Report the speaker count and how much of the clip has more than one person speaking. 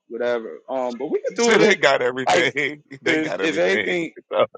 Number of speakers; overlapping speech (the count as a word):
two, about 33%